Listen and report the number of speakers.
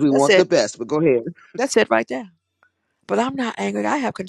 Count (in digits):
2